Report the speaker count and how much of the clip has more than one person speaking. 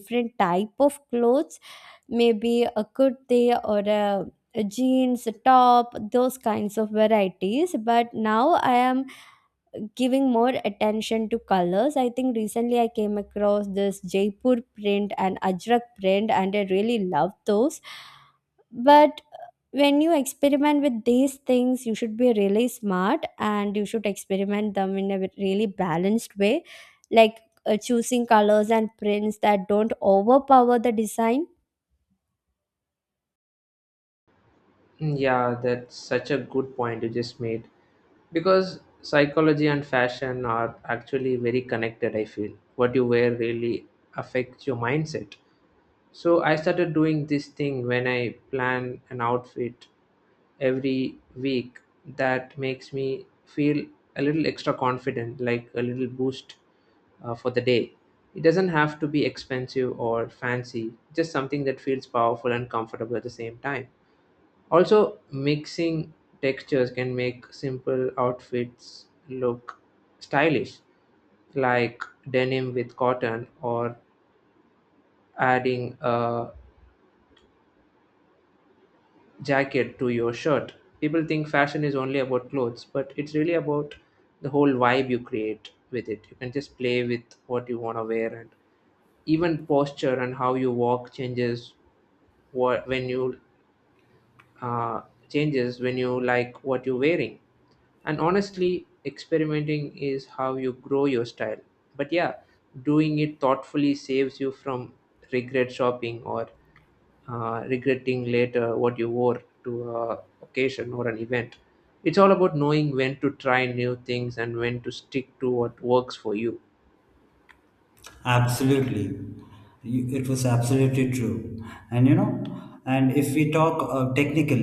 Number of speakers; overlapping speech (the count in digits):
3, no overlap